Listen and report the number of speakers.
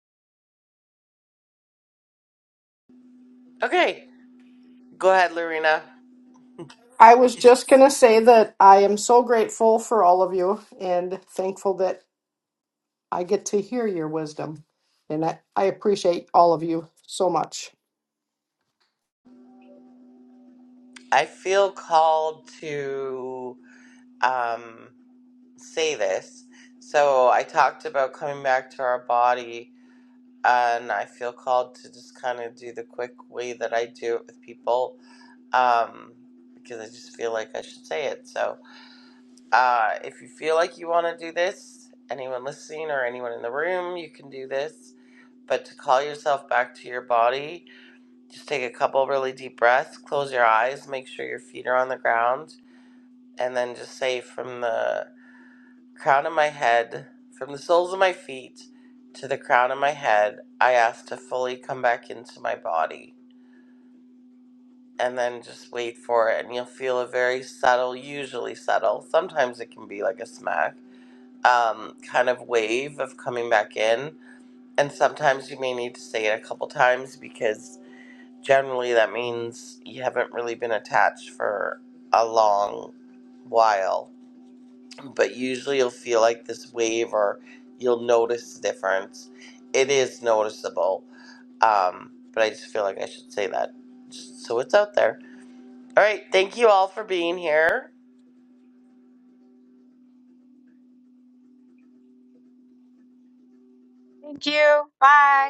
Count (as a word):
three